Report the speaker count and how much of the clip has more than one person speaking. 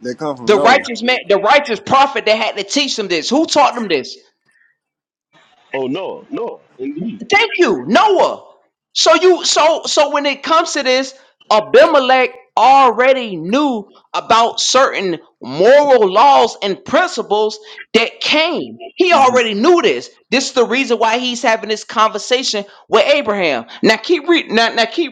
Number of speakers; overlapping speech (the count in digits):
3, about 3%